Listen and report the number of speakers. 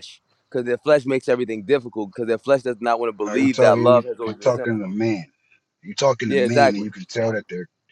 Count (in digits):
2